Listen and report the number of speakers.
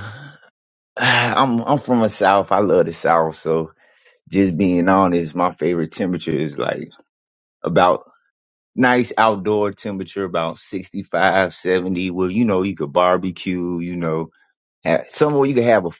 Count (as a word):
one